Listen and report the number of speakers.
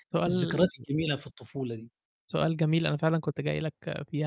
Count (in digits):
2